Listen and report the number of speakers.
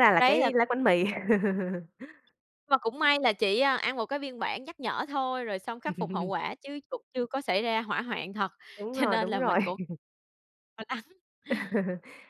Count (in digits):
2